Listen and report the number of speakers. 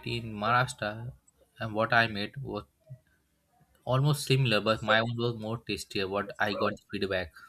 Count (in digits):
1